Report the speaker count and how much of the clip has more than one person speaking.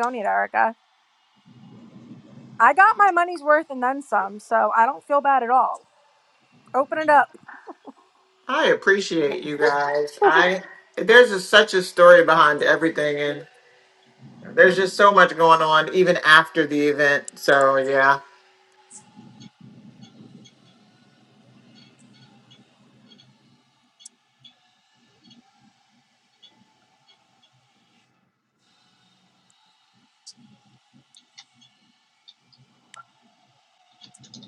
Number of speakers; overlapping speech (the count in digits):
2, no overlap